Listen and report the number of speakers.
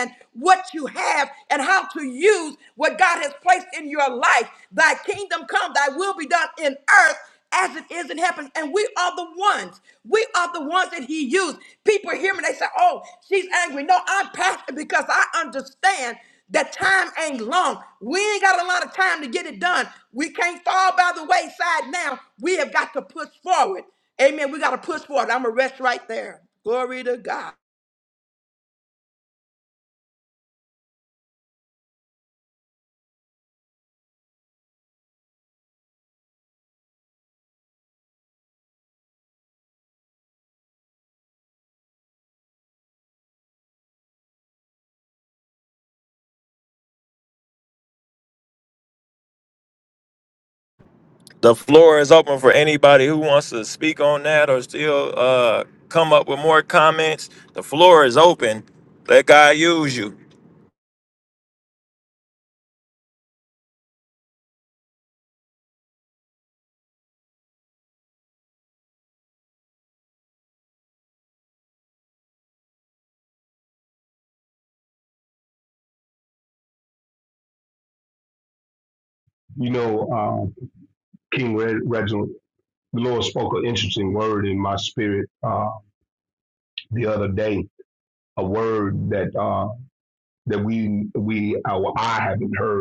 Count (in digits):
3